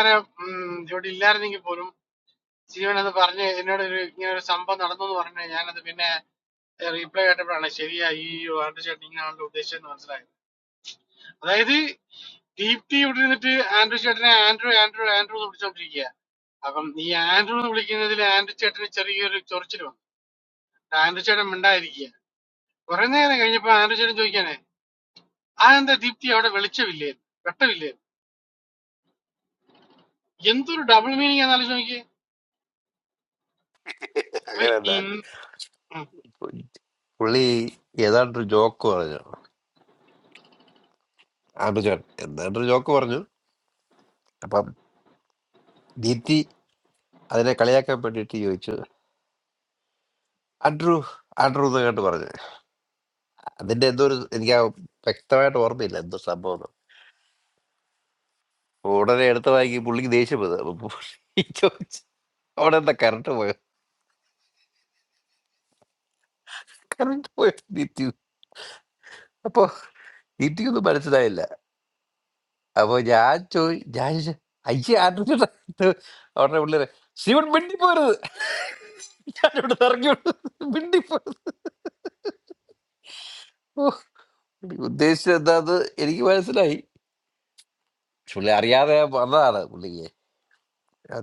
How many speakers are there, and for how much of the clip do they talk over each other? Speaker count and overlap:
2, about 1%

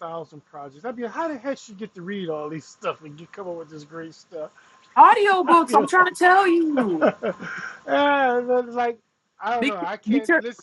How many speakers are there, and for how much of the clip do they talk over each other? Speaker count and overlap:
2, about 12%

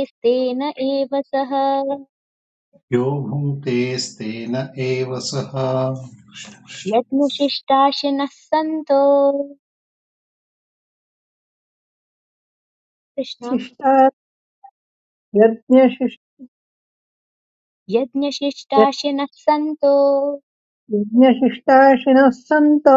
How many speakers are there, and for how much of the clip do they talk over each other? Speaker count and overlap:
3, under 1%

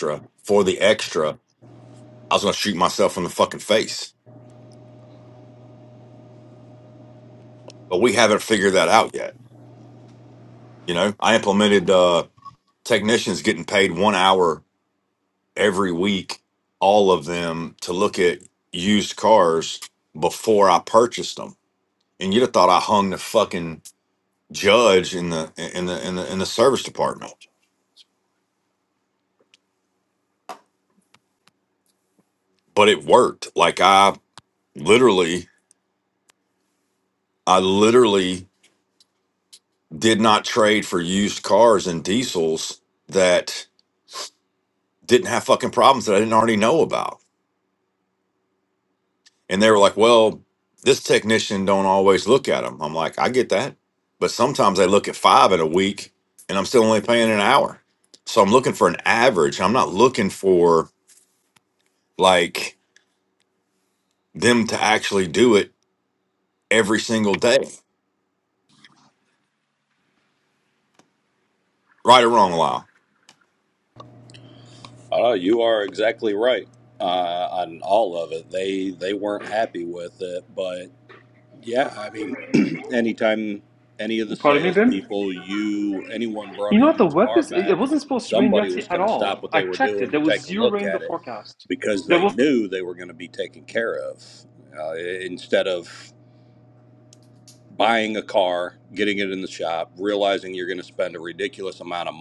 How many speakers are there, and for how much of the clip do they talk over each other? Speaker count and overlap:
3, about 5%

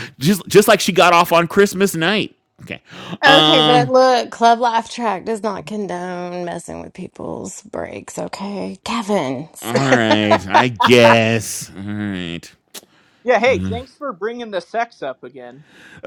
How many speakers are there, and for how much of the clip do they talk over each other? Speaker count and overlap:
3, about 6%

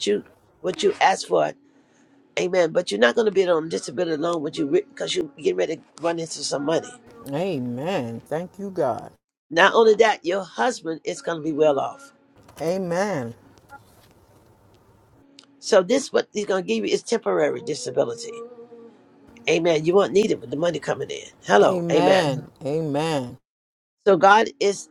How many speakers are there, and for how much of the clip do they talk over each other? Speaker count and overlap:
2, about 3%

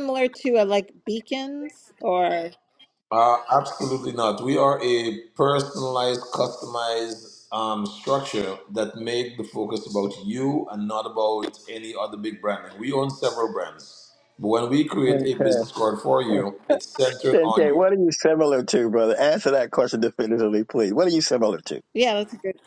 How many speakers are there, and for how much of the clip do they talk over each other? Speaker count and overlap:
3, about 5%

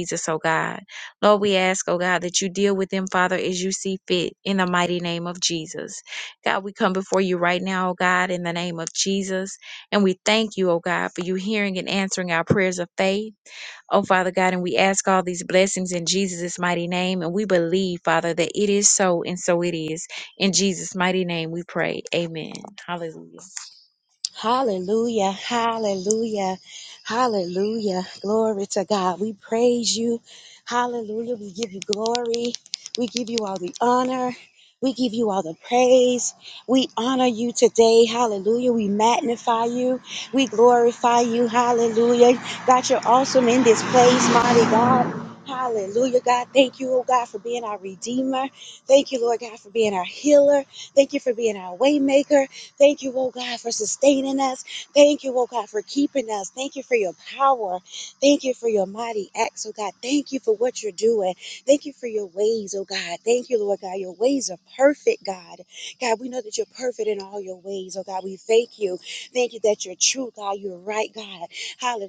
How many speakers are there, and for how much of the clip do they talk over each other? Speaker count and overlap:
2, no overlap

